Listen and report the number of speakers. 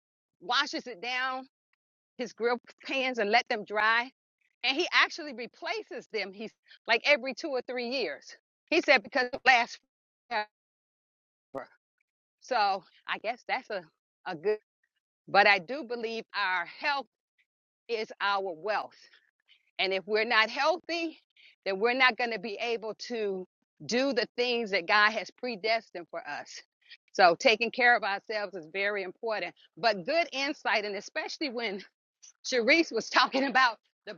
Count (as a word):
one